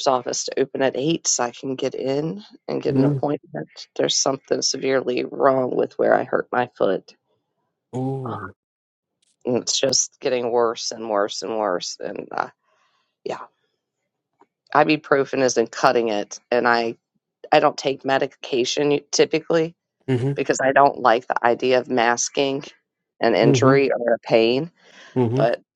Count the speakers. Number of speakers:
2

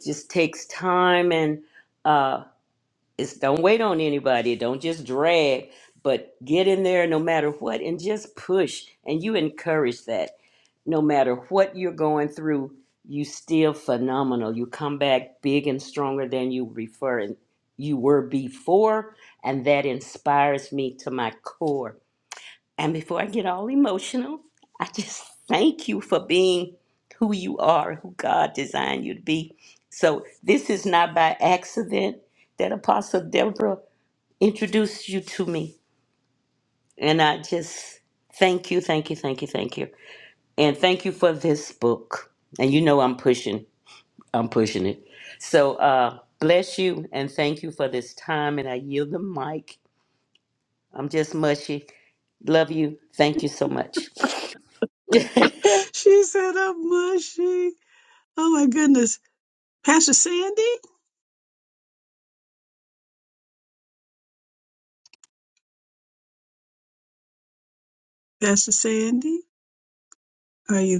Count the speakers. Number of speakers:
2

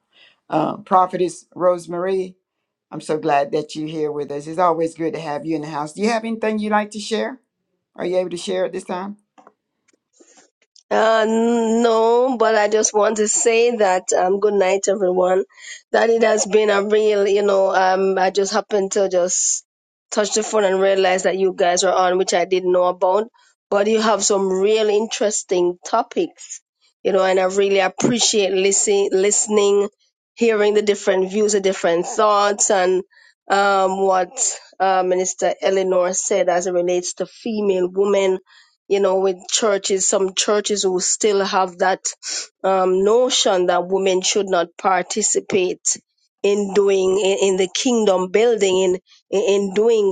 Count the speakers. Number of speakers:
2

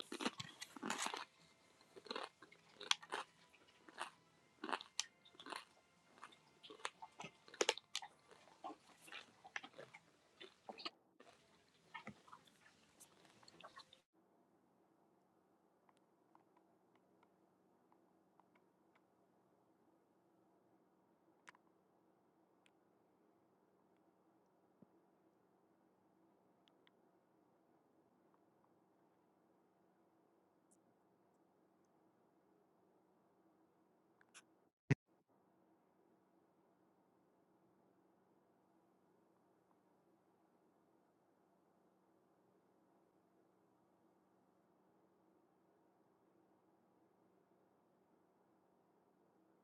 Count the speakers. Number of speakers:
0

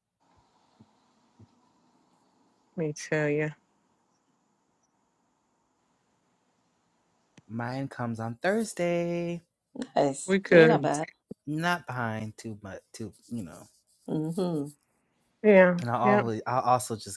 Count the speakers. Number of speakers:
3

